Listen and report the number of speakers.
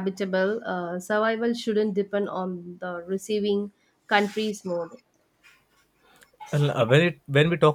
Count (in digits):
2